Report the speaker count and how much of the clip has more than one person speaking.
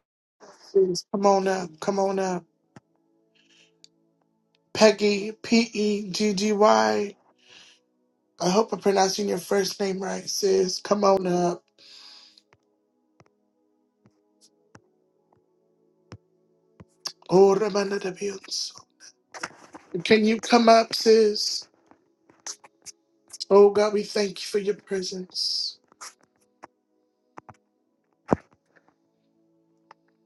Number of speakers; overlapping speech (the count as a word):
one, no overlap